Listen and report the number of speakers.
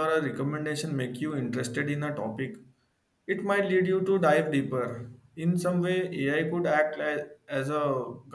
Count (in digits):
1